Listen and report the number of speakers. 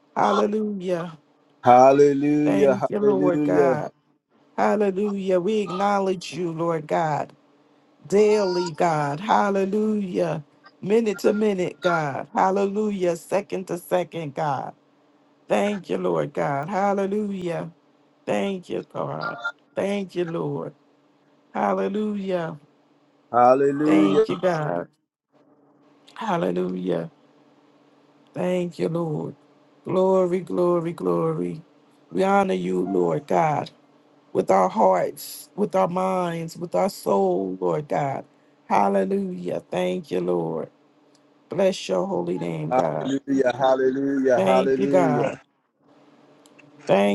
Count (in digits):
2